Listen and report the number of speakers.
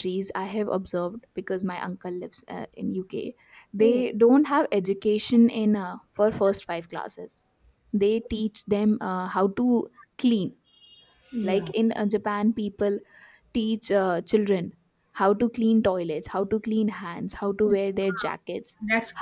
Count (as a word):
two